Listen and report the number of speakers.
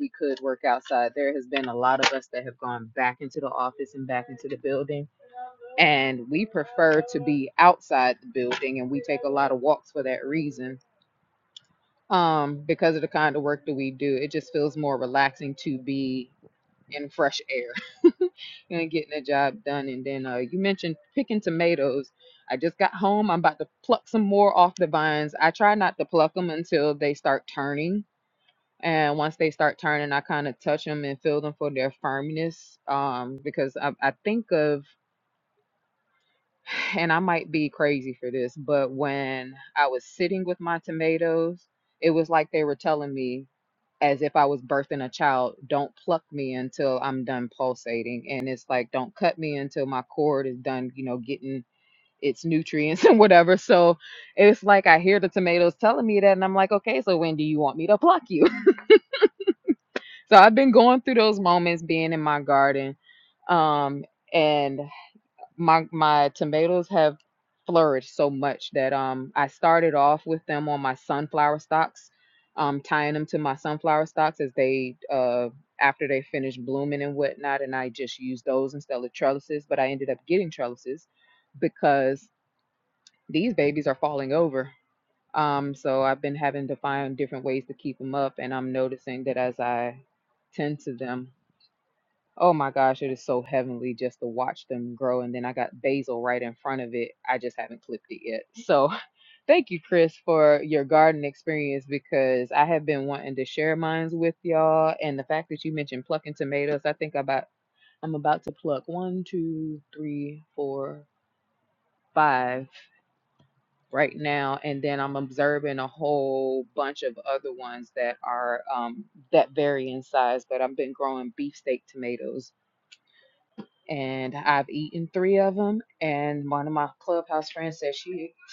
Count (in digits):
1